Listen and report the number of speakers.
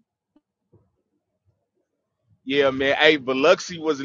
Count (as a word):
one